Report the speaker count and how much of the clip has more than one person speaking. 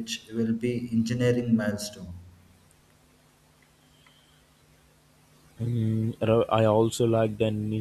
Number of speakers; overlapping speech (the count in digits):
2, no overlap